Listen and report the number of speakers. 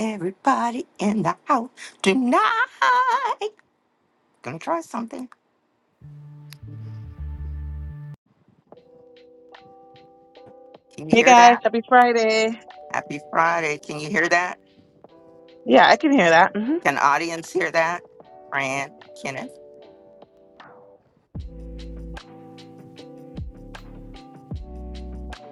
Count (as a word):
two